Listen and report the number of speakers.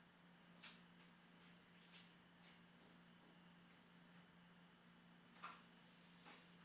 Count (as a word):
zero